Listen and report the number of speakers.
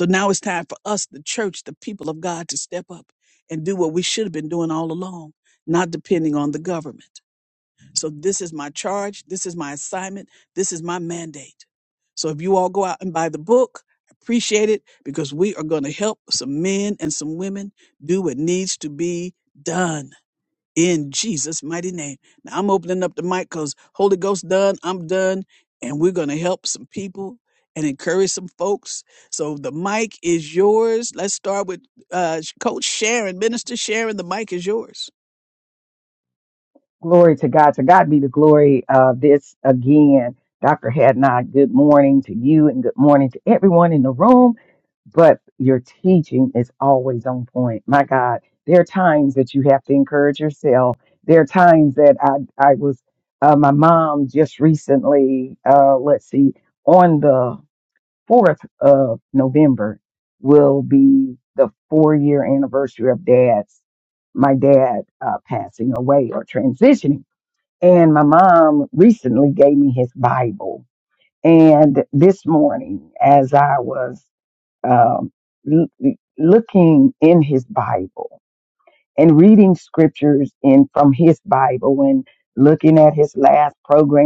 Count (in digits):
2